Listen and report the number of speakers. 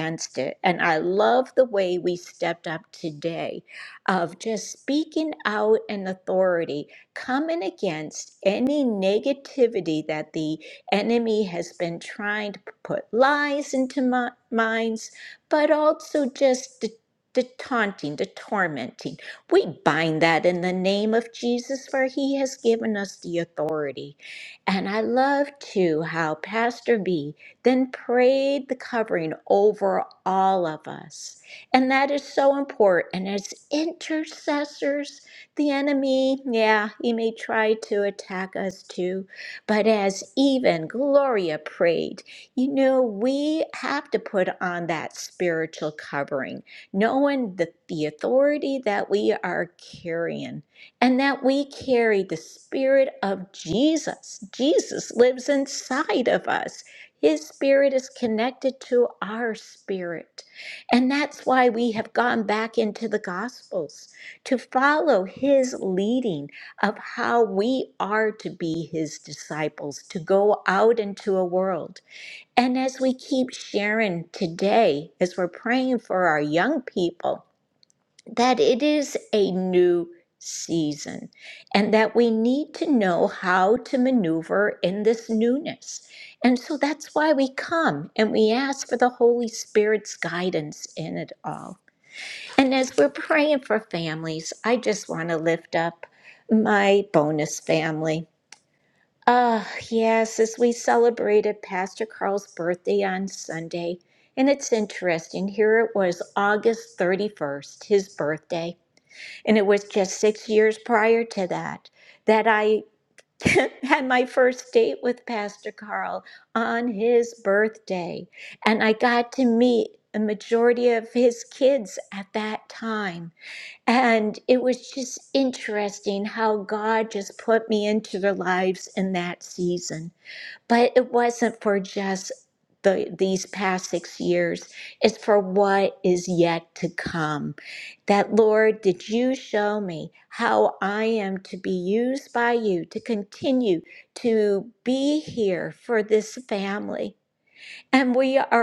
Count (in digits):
1